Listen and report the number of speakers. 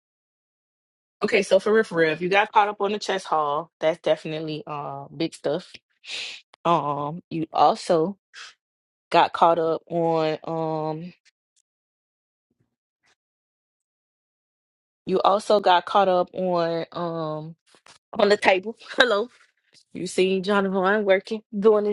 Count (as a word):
one